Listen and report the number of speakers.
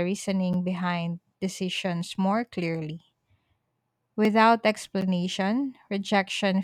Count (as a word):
one